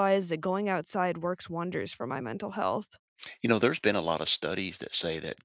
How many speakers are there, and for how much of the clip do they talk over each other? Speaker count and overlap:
2, no overlap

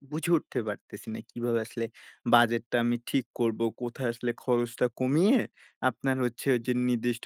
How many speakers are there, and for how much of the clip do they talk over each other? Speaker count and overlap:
1, no overlap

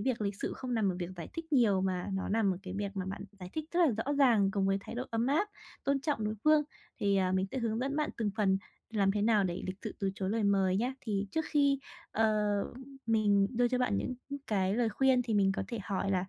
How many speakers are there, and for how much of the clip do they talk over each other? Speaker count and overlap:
1, no overlap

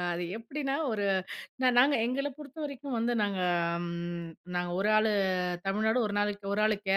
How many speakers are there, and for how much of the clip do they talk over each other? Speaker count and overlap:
1, no overlap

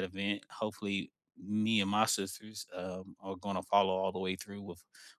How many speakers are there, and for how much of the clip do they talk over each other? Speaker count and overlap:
1, no overlap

